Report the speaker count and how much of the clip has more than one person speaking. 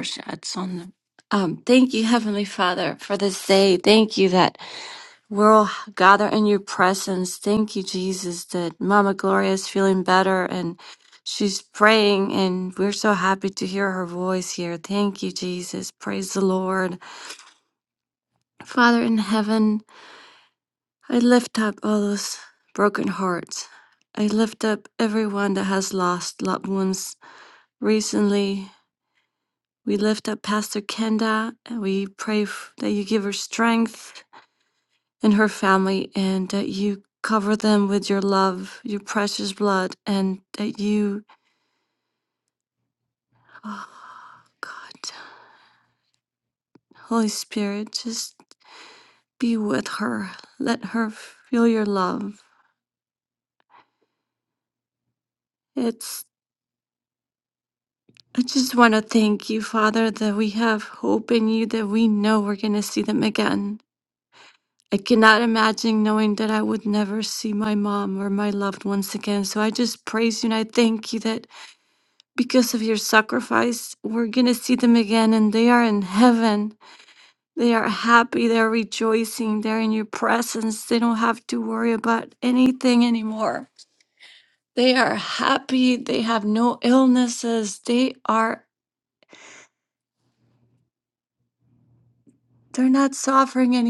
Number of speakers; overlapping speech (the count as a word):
one, no overlap